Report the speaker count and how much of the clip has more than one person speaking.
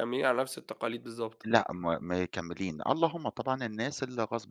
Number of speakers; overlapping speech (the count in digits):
2, no overlap